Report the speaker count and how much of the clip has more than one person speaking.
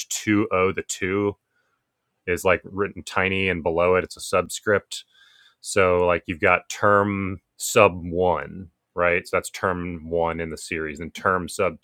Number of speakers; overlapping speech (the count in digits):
1, no overlap